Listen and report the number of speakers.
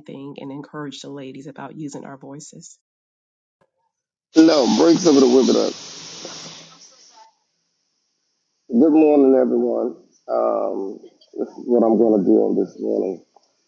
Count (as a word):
two